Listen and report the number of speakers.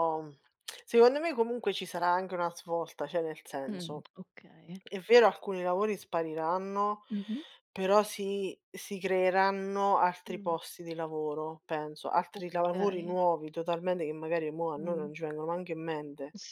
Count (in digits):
2